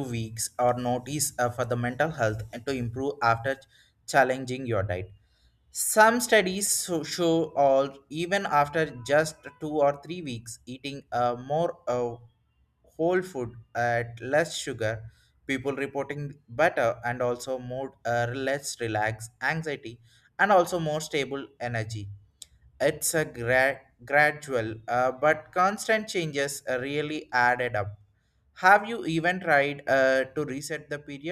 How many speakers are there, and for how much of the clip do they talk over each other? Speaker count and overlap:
1, no overlap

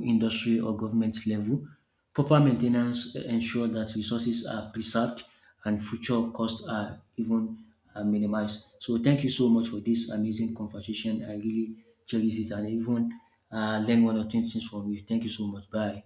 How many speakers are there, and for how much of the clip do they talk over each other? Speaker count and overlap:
1, no overlap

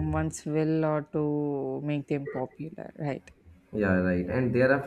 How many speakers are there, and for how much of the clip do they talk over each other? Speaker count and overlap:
2, no overlap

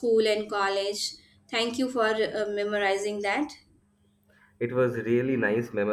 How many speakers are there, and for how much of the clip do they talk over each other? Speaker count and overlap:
2, no overlap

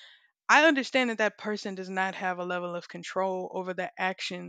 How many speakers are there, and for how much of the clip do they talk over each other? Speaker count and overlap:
1, no overlap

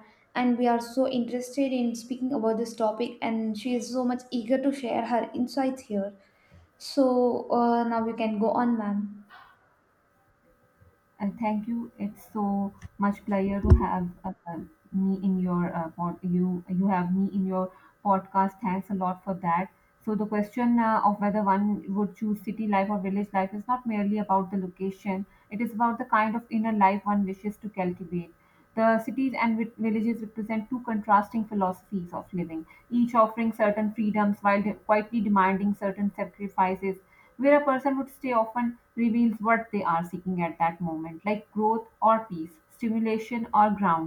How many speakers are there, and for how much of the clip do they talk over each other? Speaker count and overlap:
2, no overlap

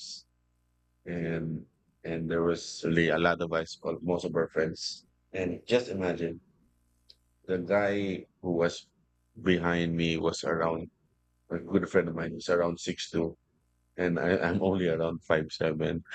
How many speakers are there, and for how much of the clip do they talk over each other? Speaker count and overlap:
1, no overlap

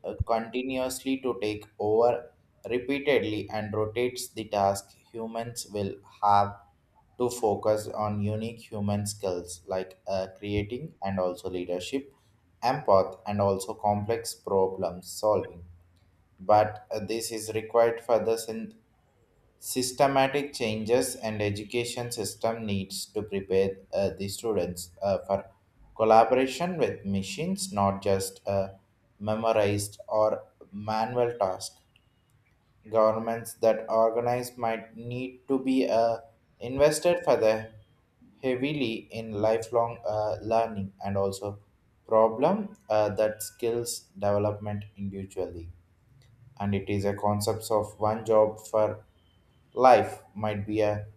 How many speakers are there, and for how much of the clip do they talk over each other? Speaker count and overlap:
1, no overlap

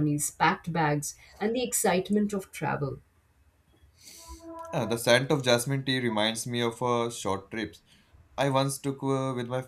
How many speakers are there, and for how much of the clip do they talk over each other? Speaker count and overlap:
2, no overlap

